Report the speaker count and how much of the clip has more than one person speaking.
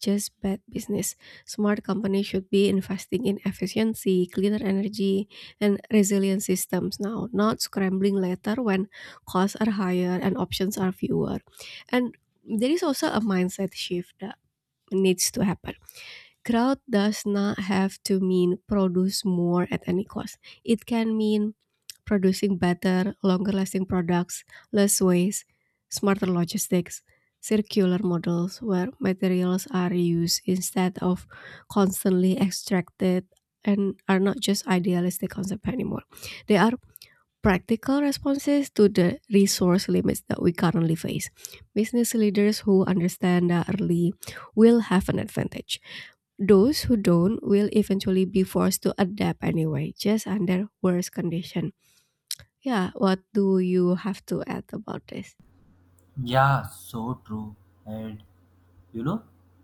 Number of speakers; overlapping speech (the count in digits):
2, no overlap